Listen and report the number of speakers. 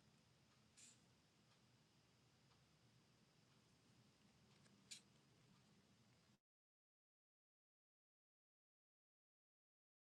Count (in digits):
0